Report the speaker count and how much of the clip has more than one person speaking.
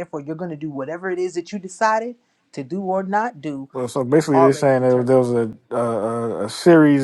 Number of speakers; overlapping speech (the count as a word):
two, about 11%